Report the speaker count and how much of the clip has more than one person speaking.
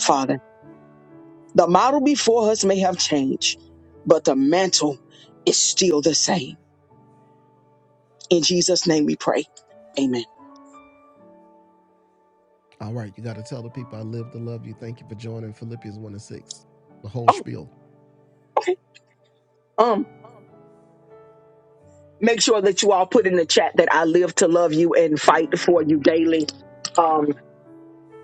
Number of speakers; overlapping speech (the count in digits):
2, about 1%